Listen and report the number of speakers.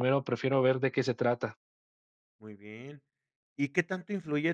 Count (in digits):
2